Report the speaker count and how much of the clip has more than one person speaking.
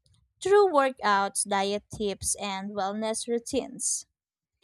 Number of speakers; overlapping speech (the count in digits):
1, no overlap